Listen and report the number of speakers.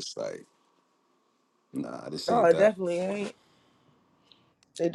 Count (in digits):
2